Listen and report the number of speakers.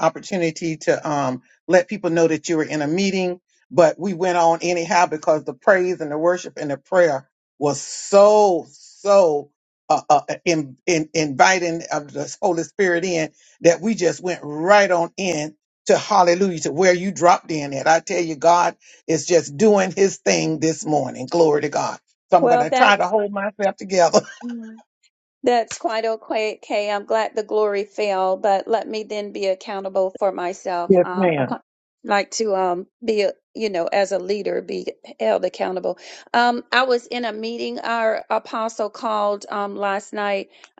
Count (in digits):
2